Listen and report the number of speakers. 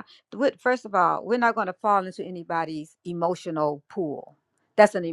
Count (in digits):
1